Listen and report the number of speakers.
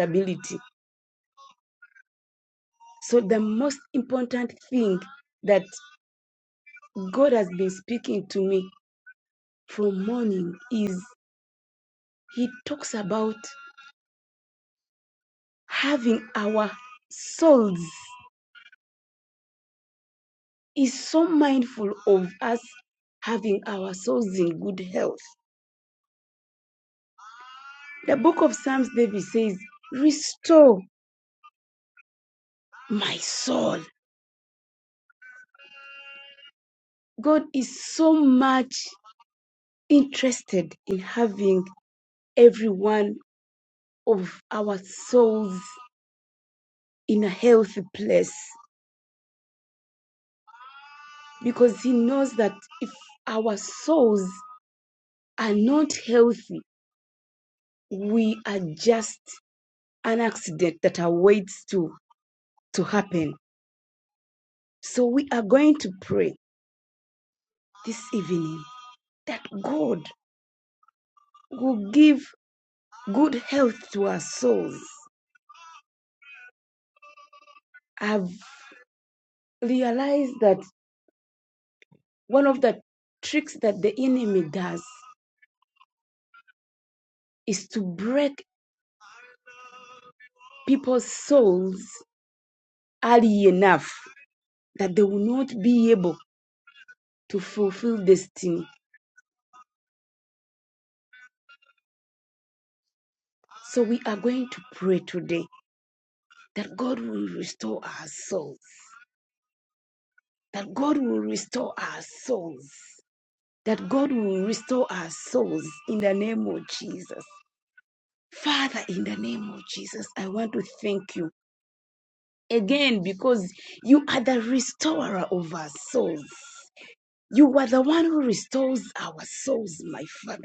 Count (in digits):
1